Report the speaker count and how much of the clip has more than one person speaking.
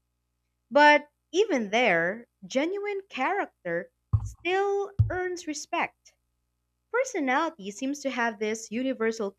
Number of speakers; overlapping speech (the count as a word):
one, no overlap